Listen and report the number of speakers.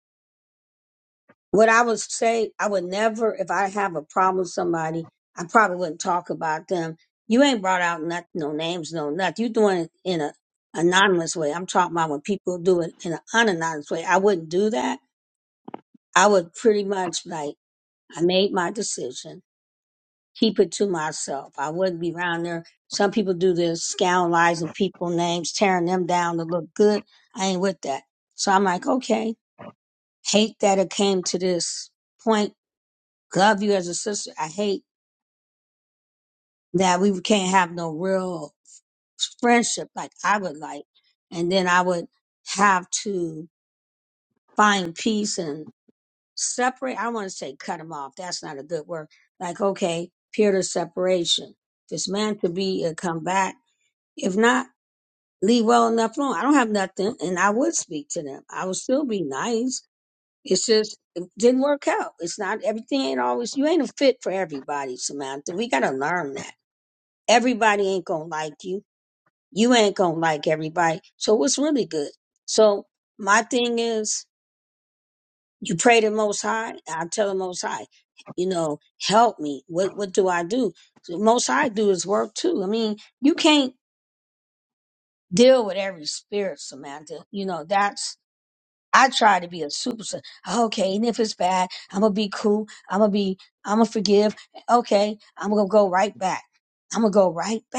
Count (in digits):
1